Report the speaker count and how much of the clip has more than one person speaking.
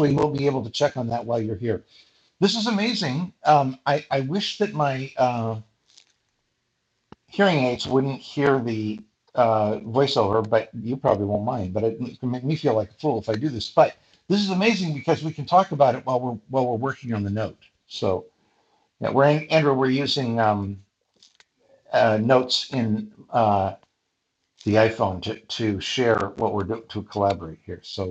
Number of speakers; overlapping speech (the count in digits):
1, no overlap